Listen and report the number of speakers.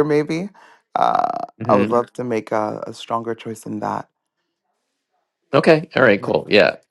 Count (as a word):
two